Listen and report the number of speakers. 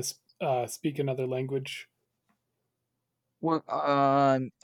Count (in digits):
2